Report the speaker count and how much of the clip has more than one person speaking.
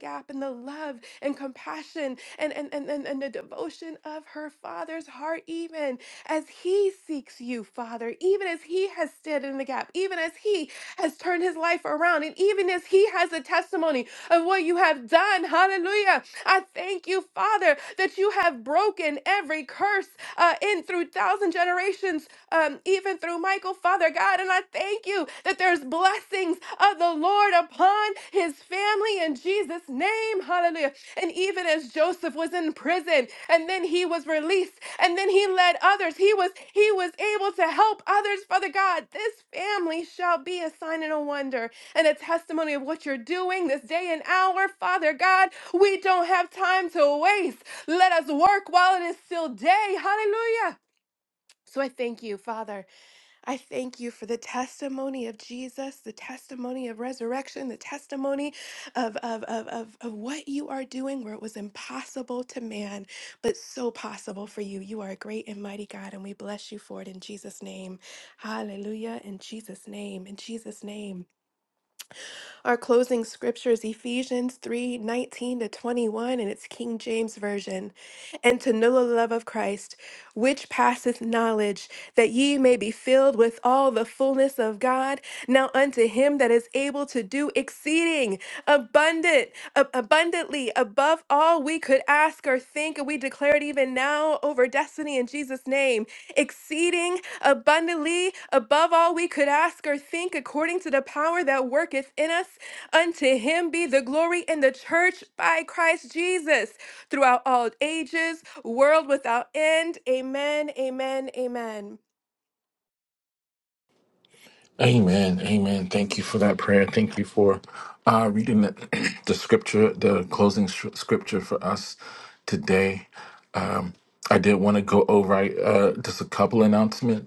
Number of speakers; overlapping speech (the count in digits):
2, no overlap